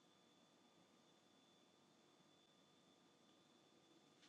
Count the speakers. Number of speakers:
0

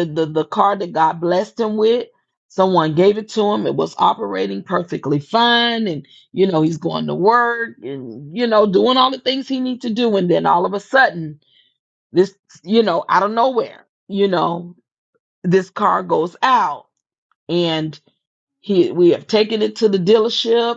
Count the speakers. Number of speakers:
1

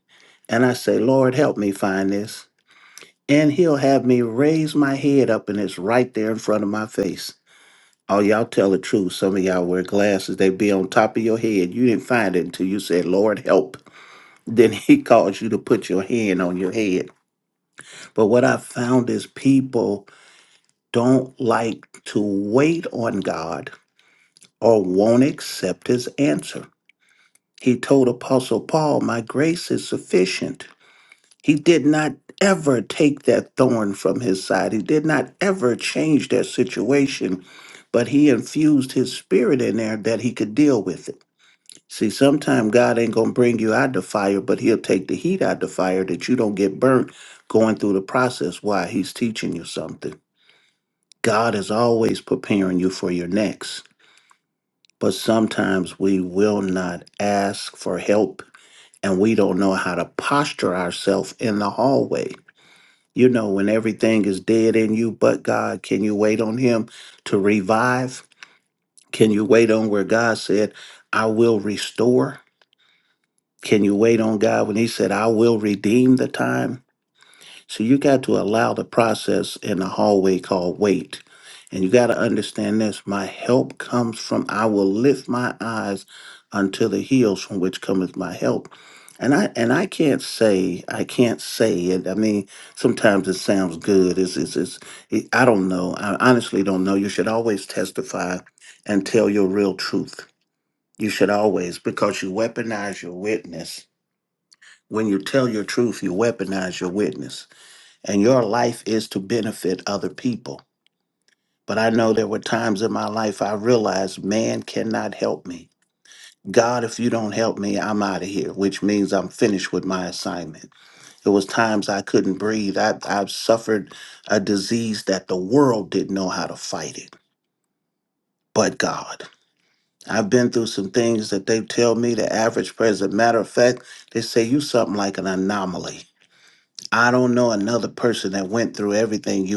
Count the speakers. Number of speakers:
1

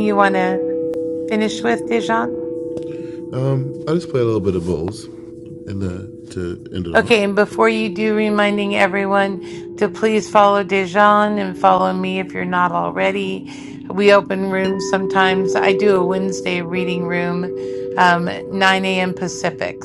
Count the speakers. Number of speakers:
2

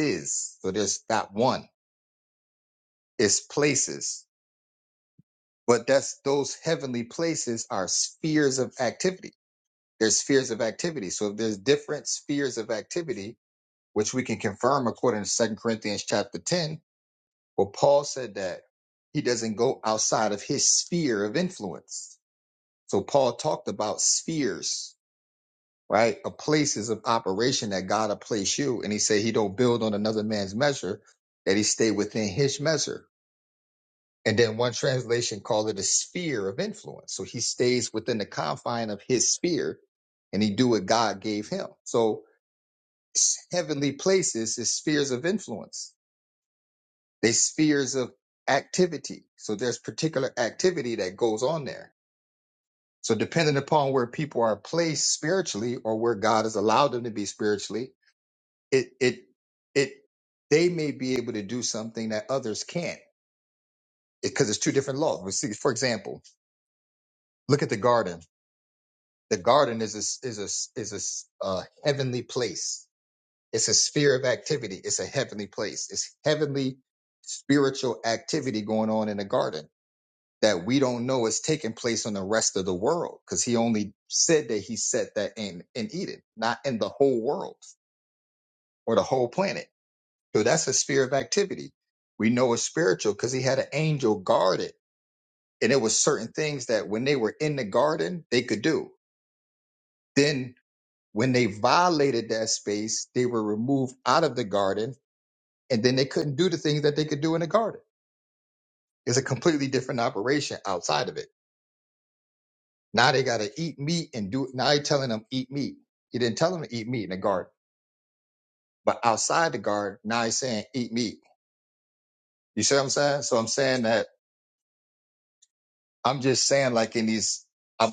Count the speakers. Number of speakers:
1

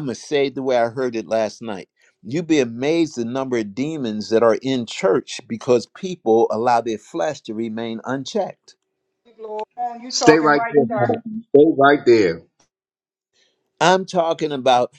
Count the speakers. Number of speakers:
3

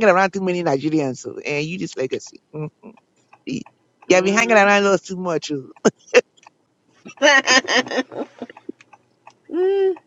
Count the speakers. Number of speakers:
2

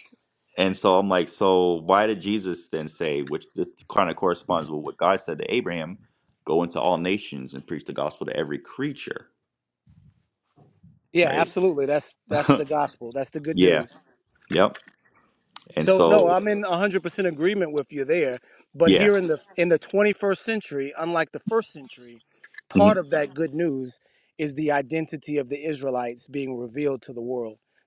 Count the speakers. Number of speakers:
2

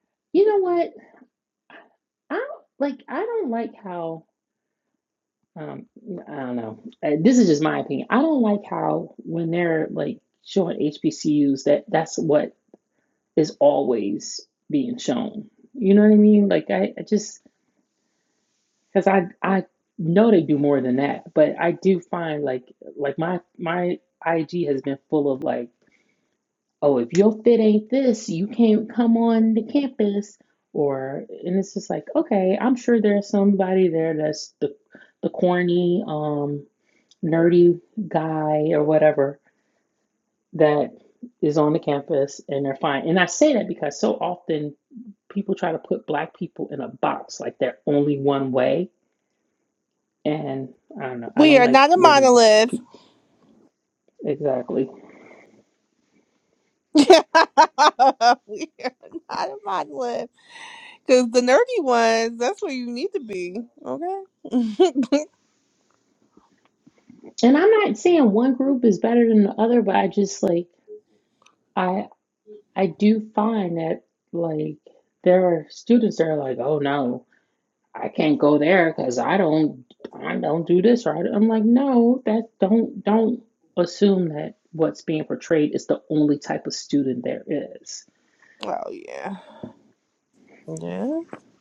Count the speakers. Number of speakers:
2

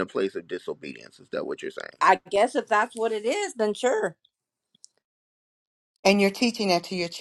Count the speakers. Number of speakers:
3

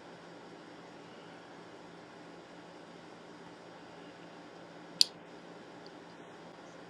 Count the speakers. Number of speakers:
0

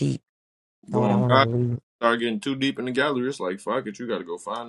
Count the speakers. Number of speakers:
2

